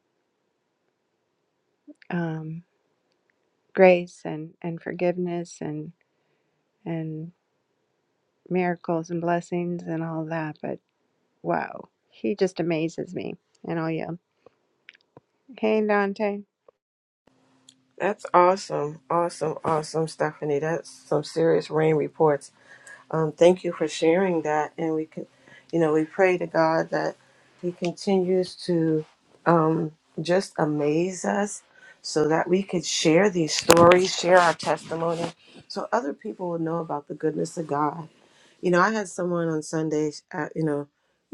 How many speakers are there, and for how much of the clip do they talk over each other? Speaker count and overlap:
two, no overlap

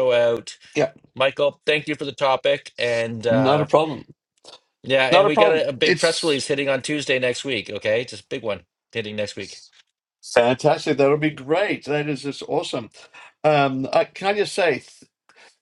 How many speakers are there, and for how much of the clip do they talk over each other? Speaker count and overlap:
two, about 11%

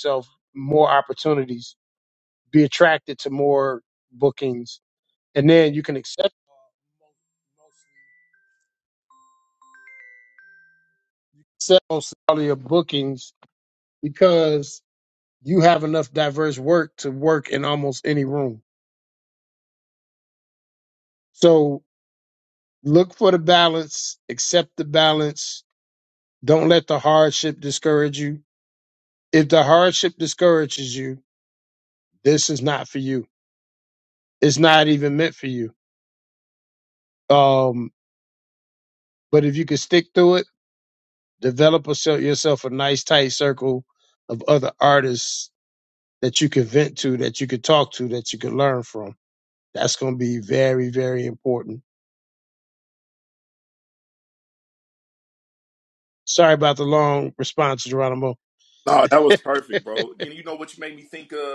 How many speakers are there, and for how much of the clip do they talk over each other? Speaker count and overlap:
two, no overlap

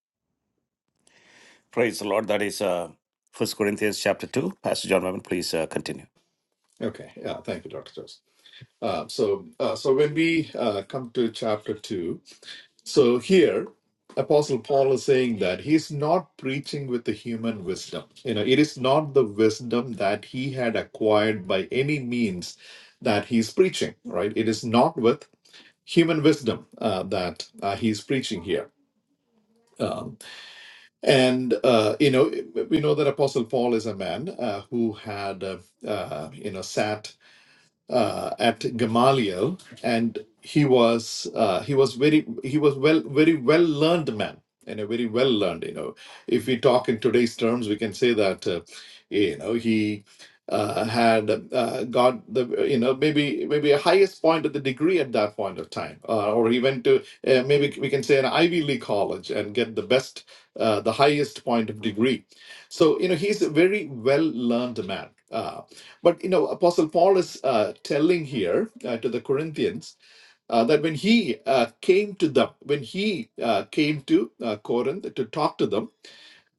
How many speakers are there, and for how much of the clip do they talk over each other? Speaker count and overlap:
two, no overlap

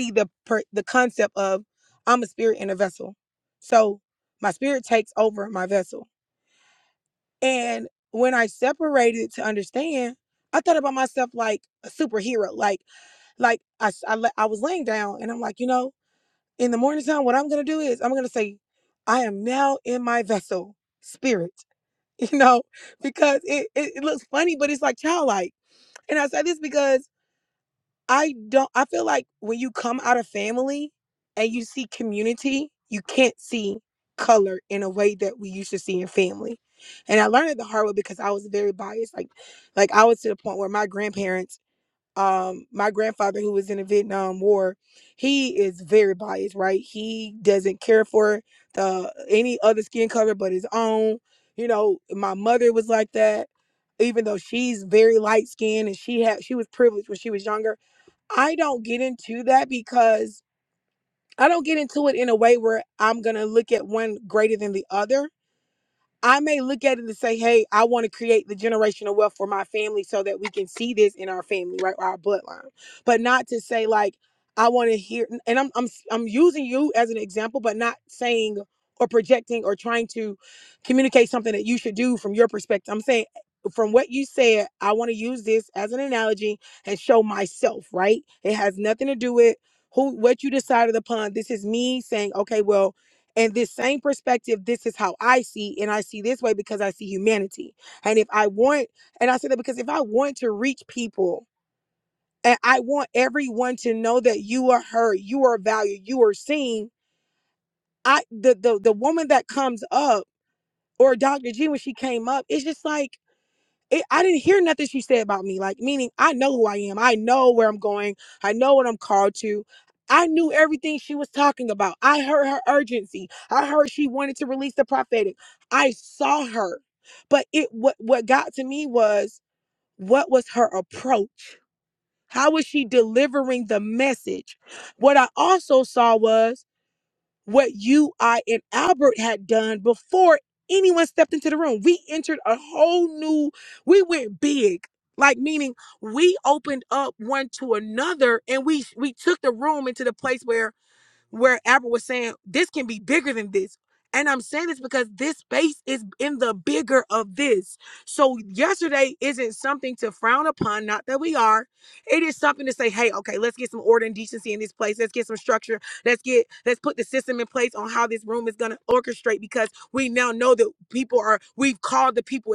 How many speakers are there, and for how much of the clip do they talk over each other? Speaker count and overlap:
one, no overlap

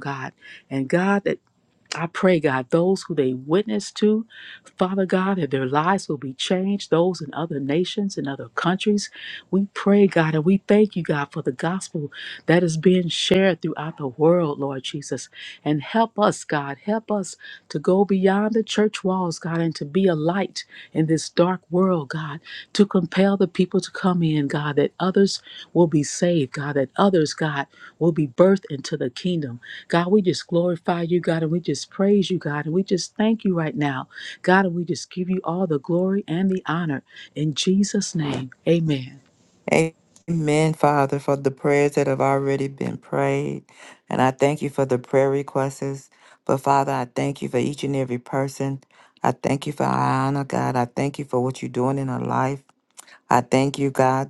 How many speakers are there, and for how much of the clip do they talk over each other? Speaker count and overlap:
two, no overlap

